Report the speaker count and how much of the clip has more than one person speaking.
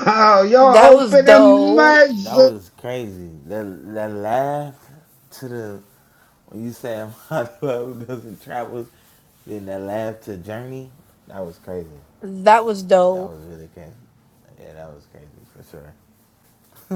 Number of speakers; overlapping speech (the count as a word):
three, about 11%